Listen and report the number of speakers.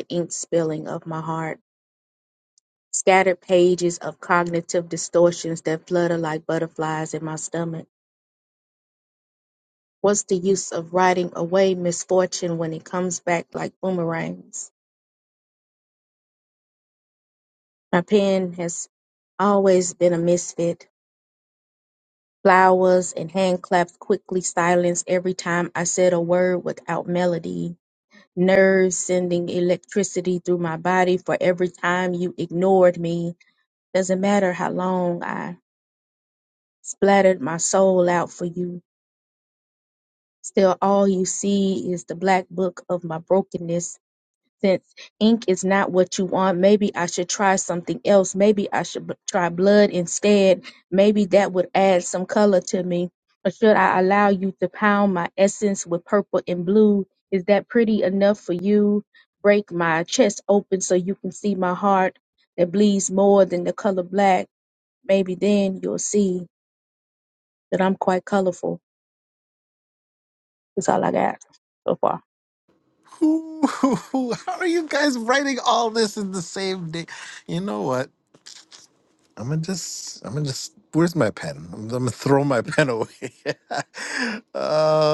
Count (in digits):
2